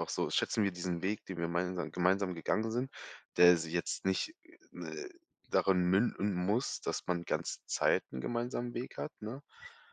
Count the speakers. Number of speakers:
one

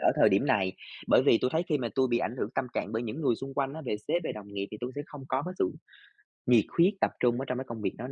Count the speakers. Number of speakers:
one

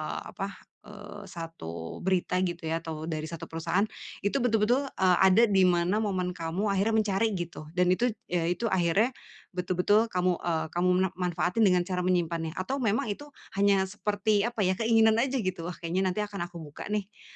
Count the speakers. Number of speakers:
one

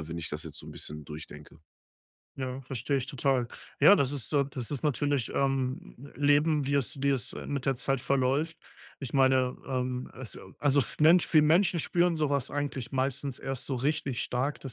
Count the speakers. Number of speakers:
two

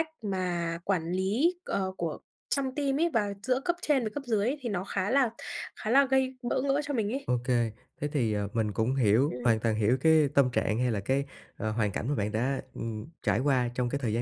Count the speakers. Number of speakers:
two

